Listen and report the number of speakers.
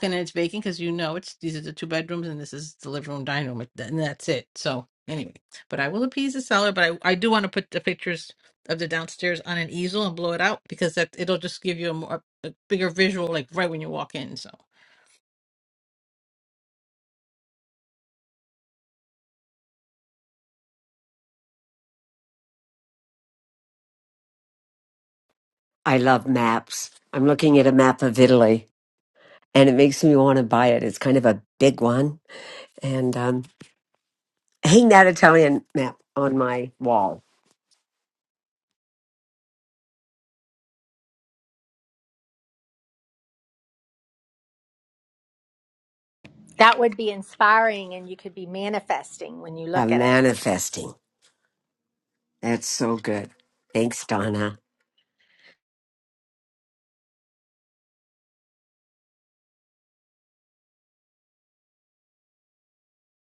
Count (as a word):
three